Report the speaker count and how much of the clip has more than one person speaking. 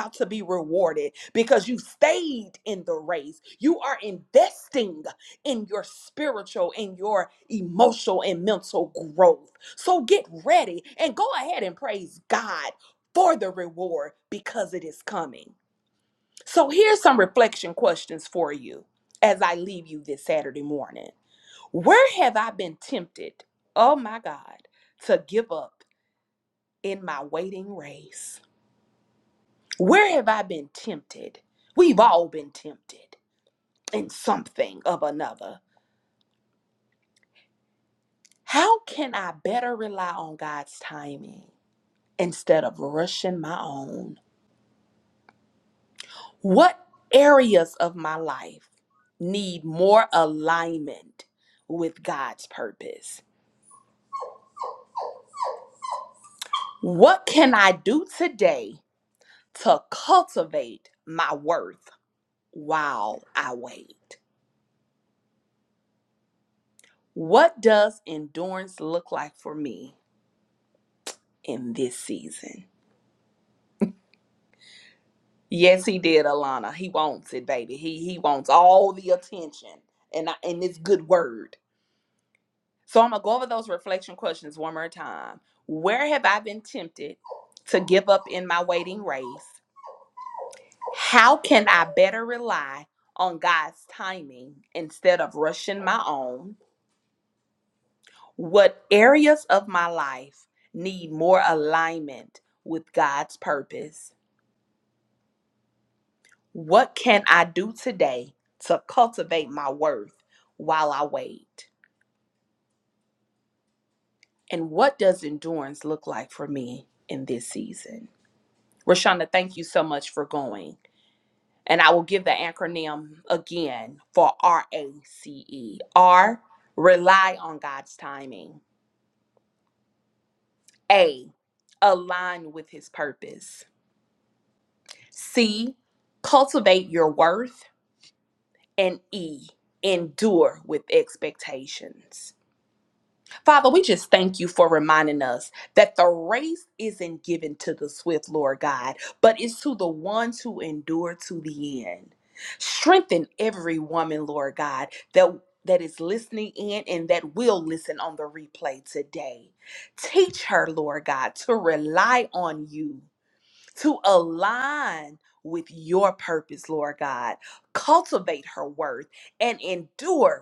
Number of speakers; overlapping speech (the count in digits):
1, no overlap